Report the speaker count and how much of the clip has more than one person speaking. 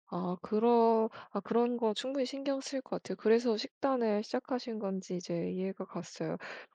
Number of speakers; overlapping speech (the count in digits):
1, no overlap